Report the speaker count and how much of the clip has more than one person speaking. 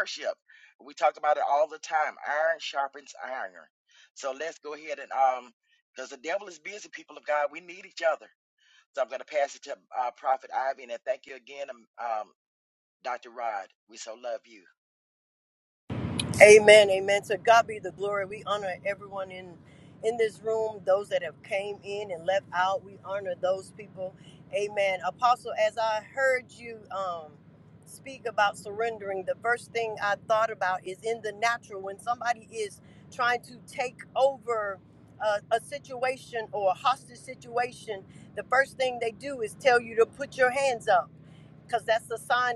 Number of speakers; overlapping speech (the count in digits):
2, no overlap